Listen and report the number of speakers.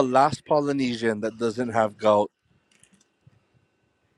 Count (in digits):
1